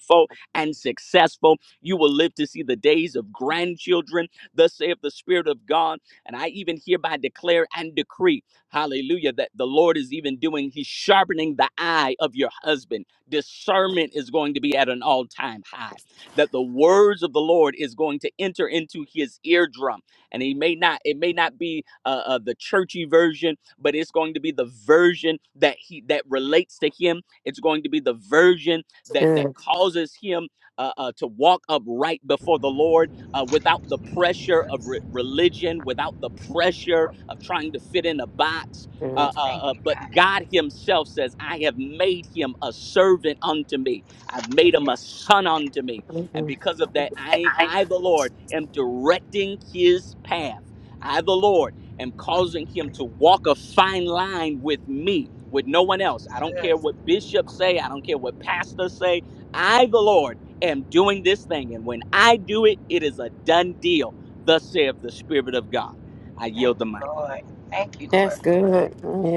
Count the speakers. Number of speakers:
three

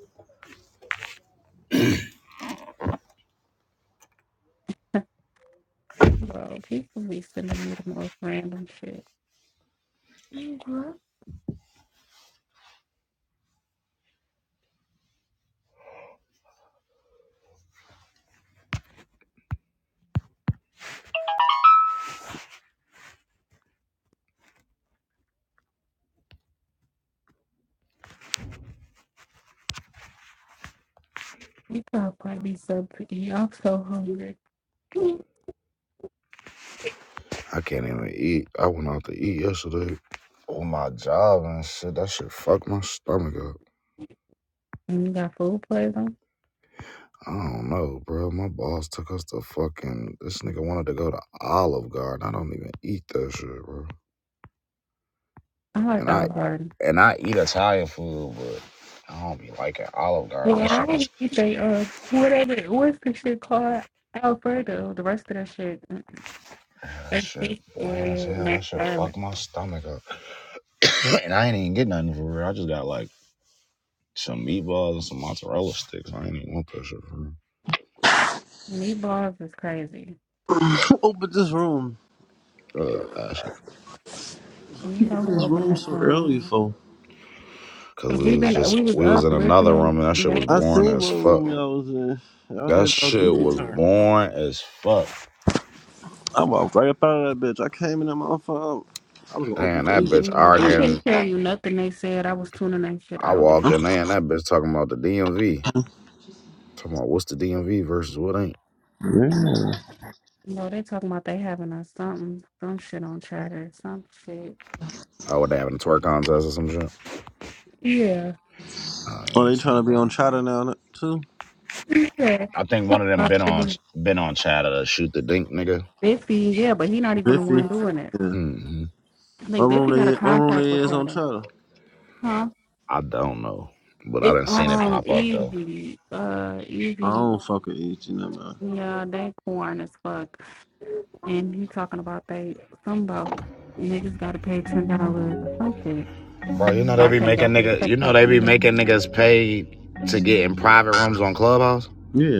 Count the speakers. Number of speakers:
three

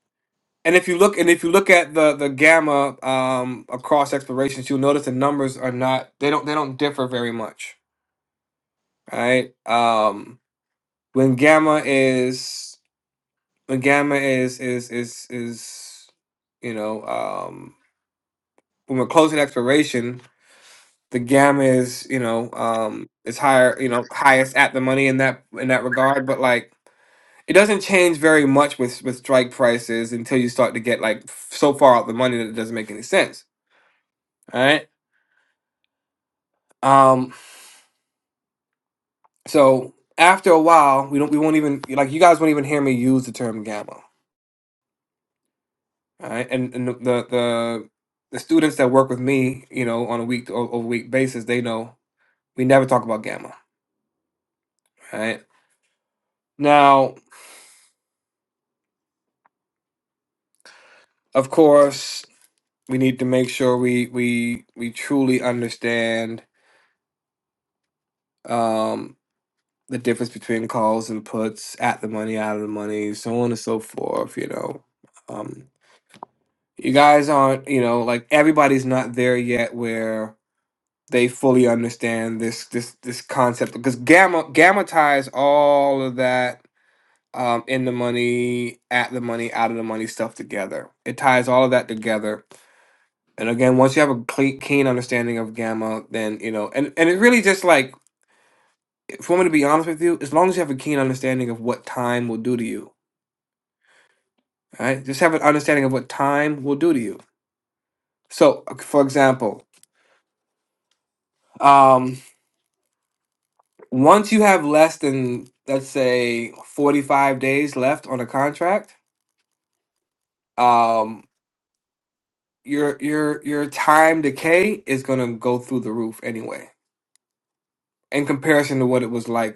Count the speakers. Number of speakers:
one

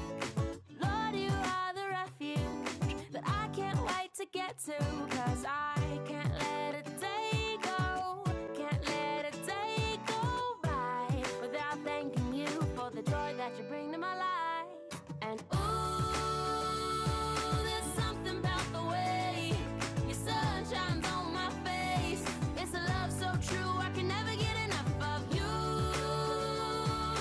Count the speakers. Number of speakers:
one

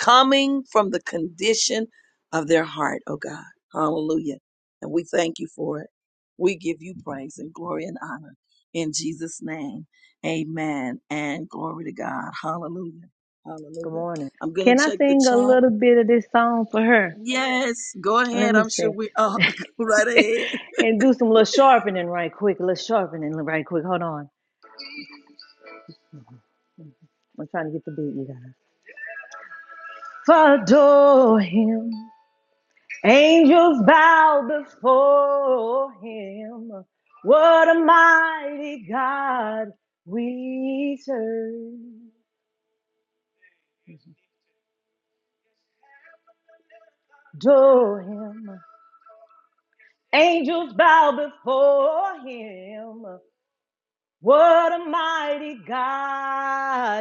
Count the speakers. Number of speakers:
two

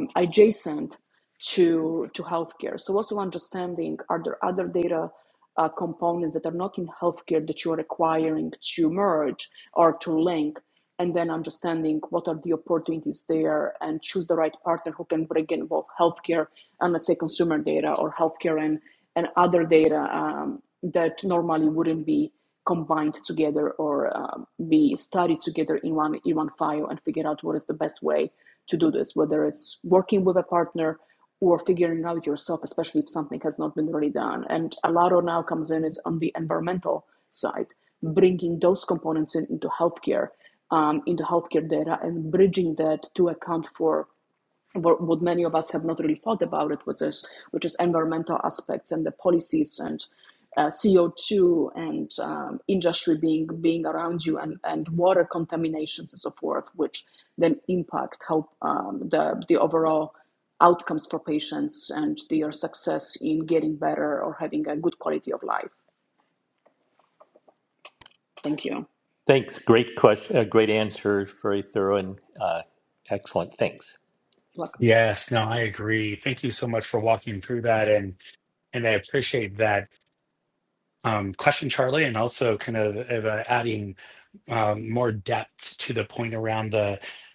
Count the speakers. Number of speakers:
three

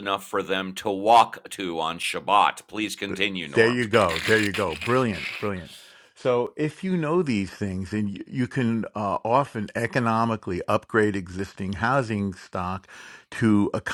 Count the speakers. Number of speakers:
two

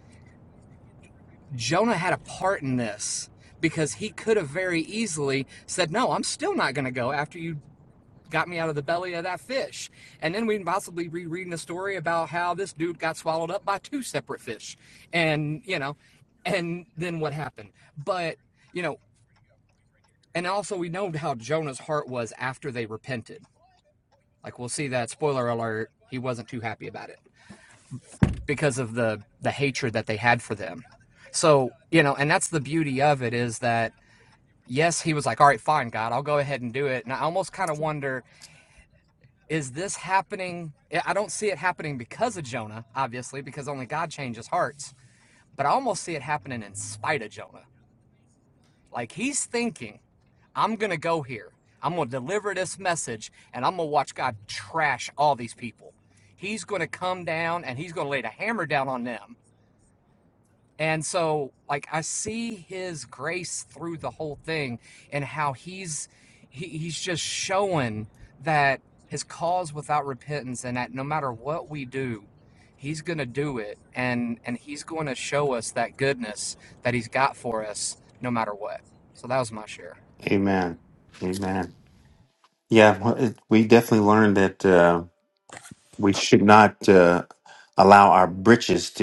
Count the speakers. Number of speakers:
two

